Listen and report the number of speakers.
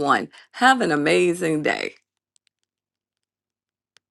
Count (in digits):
1